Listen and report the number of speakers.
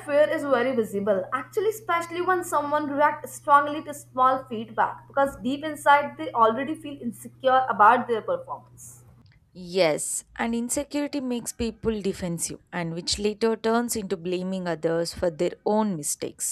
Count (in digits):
2